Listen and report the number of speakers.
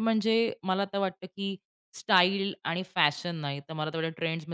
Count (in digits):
1